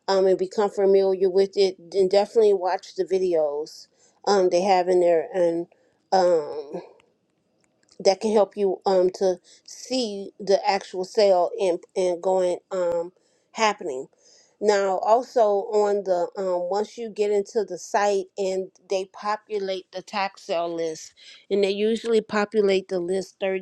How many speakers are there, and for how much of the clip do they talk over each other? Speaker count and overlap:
1, no overlap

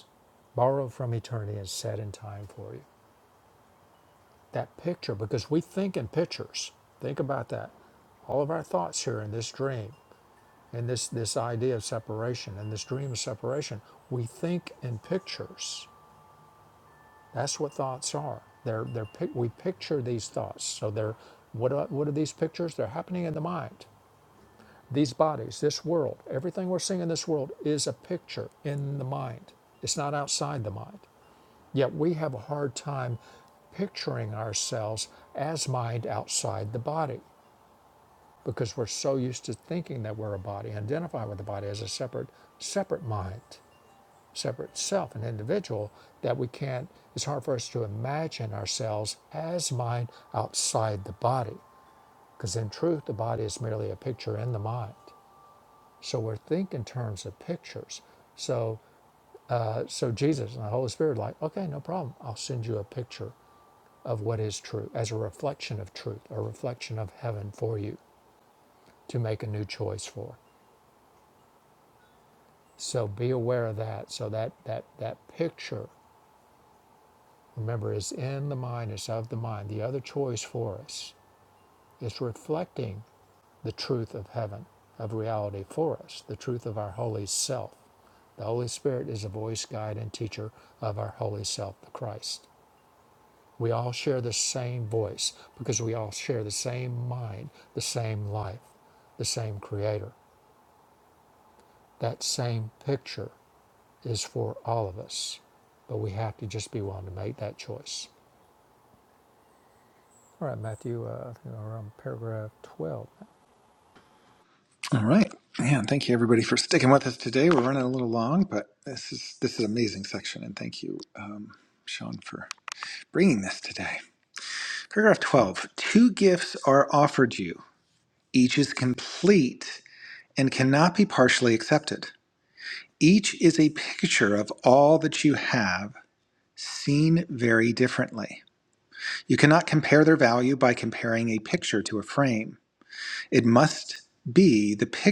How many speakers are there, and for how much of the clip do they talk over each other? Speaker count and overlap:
2, no overlap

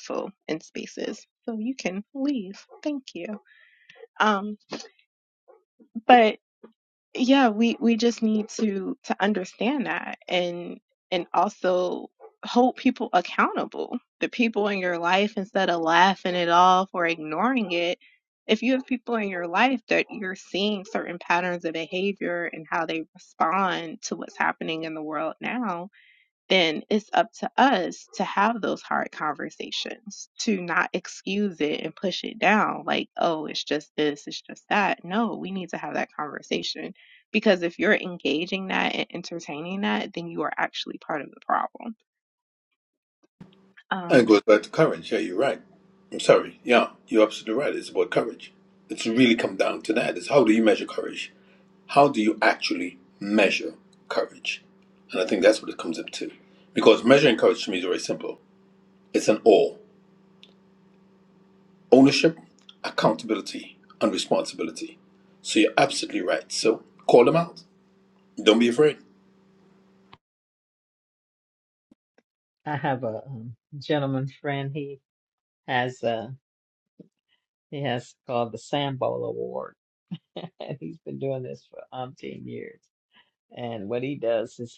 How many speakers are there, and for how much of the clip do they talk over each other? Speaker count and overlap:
3, under 1%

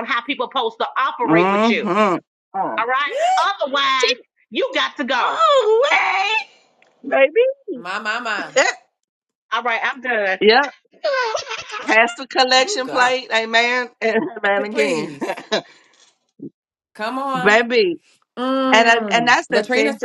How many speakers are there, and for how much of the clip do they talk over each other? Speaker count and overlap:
3, about 18%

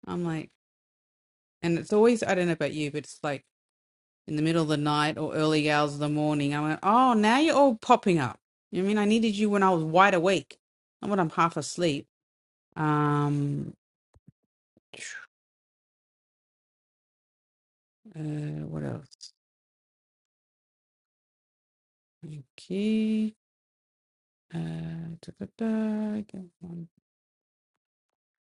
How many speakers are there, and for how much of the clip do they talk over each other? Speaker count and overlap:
1, no overlap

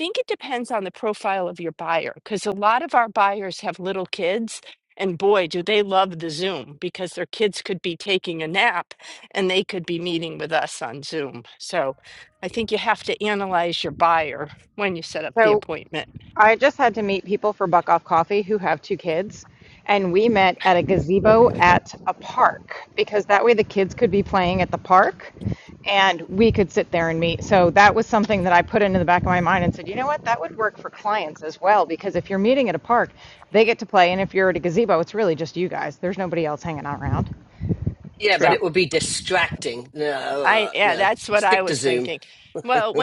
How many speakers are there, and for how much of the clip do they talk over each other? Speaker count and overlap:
3, about 5%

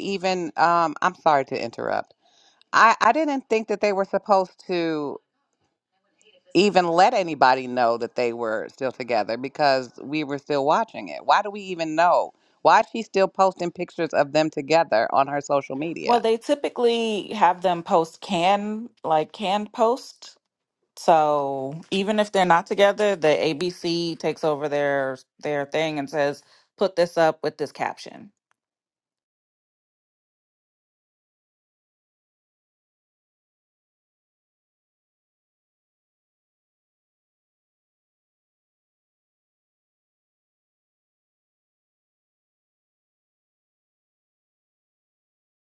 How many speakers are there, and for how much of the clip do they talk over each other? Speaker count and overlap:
2, under 1%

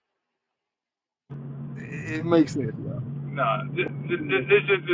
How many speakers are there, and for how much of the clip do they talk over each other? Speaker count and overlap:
2, about 5%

